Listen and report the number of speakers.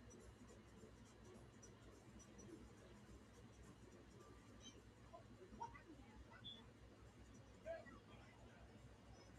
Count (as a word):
zero